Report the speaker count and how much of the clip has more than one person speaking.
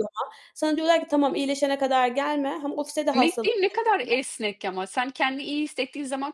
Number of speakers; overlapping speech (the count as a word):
two, about 16%